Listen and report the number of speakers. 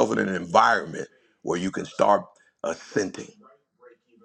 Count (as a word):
one